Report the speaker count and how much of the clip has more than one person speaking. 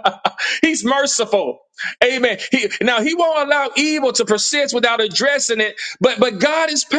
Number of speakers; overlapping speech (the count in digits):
1, no overlap